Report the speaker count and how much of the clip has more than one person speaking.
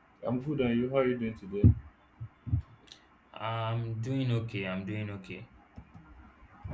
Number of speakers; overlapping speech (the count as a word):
two, no overlap